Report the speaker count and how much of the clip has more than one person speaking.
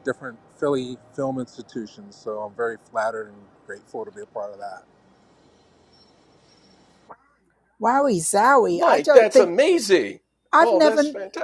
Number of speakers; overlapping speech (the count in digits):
3, about 12%